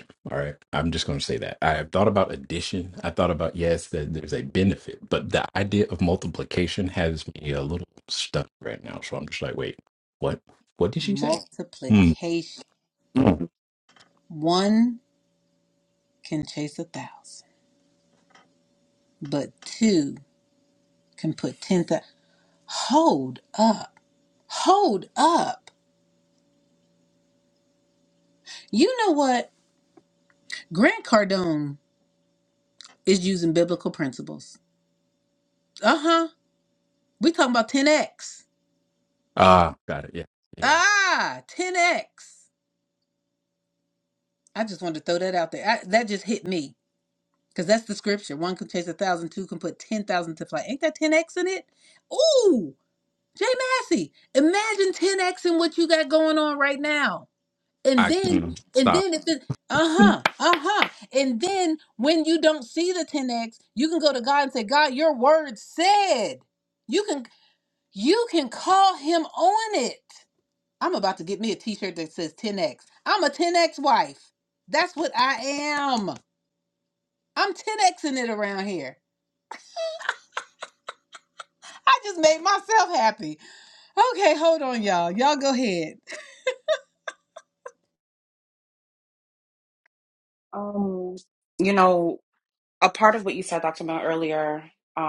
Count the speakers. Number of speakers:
three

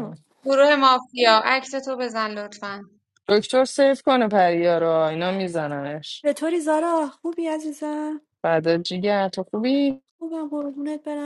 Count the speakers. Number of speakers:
three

